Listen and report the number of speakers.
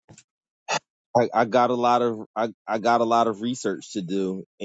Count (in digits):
1